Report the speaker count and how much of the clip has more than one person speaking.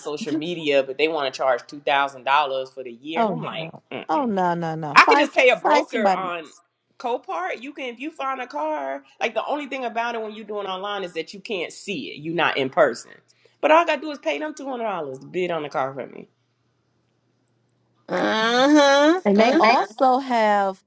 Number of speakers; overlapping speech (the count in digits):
3, about 13%